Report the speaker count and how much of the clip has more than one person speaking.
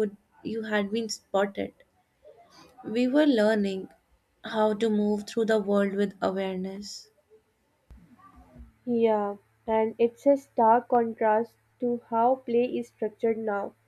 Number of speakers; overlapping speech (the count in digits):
2, no overlap